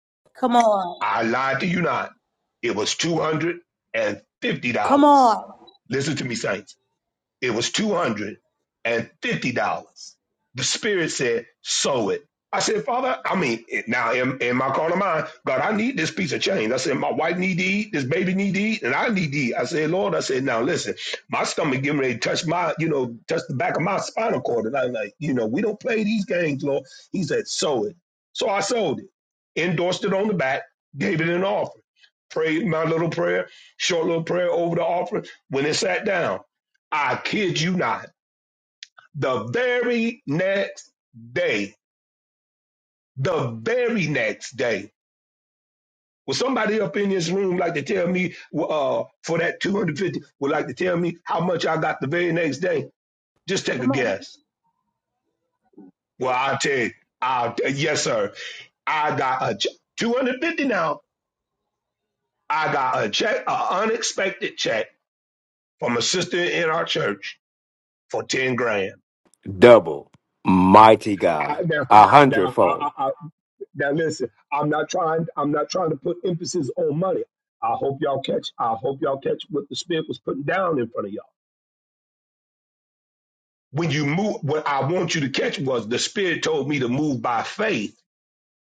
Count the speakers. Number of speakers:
three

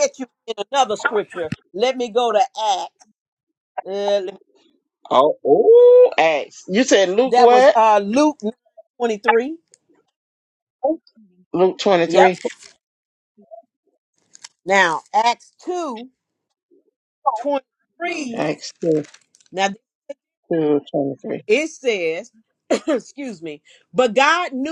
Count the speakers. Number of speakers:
two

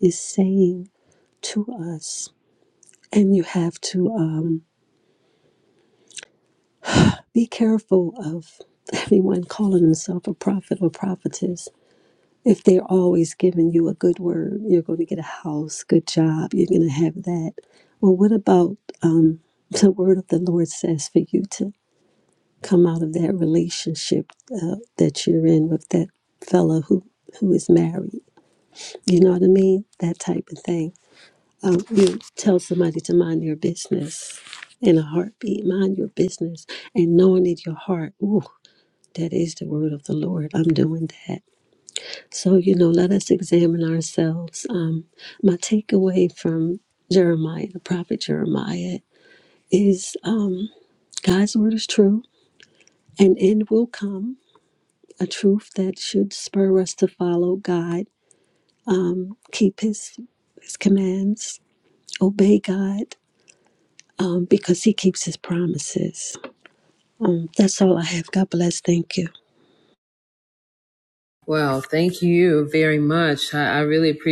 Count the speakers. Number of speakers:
two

